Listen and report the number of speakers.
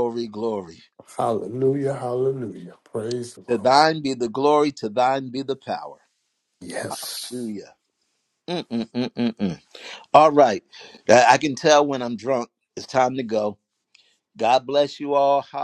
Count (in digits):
2